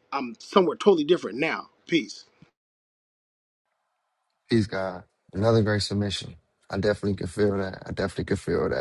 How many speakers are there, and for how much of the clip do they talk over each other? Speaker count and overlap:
2, no overlap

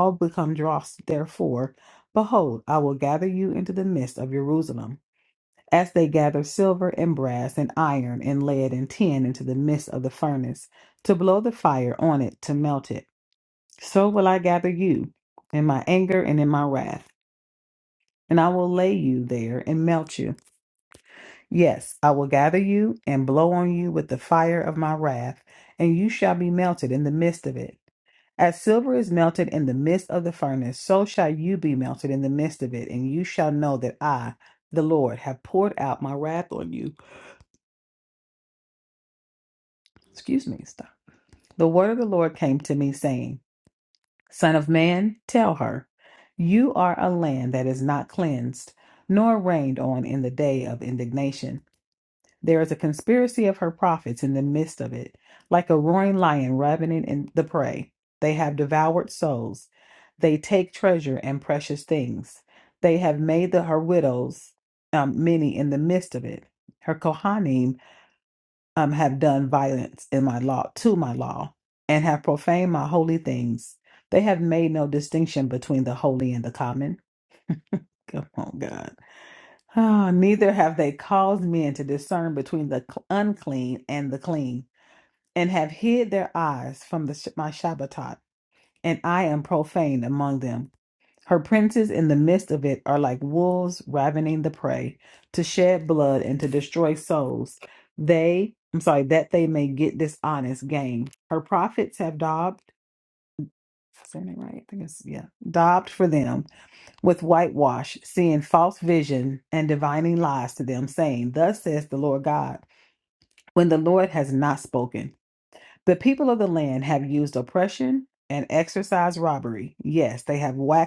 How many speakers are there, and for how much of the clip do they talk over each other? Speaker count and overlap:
1, no overlap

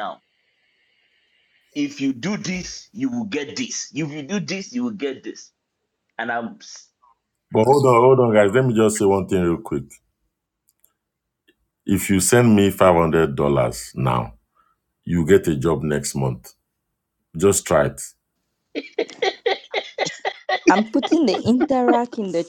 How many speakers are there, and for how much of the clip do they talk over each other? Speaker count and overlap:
3, no overlap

